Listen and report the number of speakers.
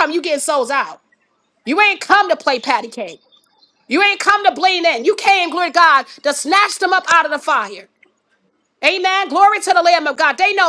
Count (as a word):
one